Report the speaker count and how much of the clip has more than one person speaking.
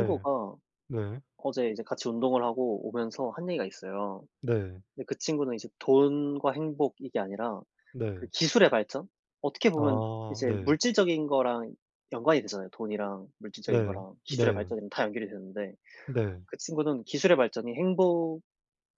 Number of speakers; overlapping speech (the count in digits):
2, about 12%